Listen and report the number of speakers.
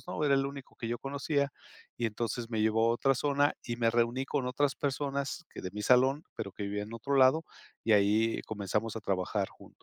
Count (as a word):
one